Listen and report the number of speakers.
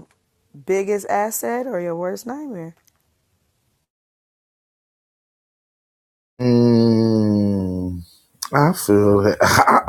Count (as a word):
two